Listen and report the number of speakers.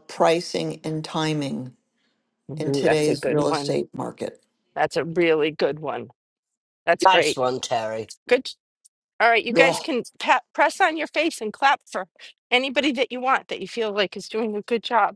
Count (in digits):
3